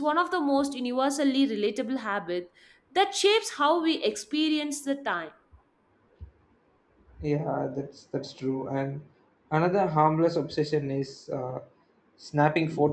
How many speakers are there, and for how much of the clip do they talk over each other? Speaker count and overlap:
2, no overlap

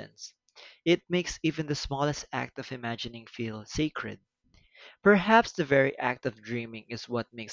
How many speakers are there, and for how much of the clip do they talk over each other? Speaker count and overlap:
1, no overlap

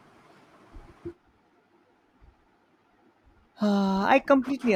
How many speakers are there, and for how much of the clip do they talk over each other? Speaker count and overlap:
1, no overlap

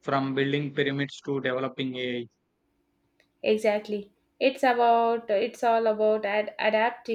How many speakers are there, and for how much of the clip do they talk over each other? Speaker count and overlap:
2, no overlap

